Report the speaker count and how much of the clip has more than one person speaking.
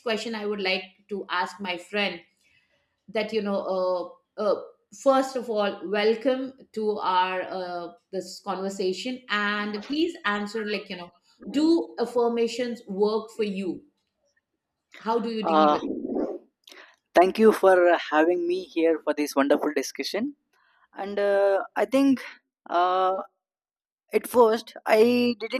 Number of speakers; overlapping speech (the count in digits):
2, about 2%